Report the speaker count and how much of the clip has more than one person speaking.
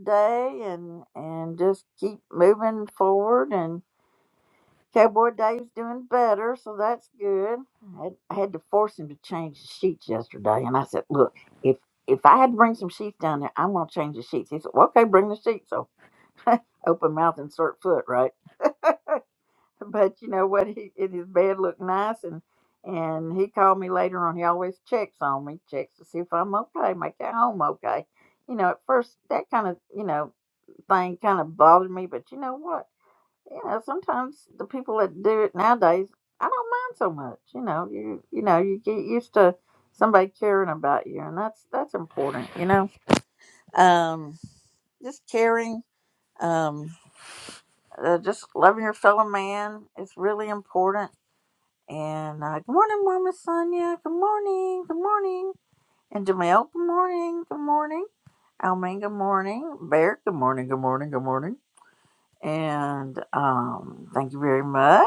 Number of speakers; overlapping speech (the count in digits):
1, no overlap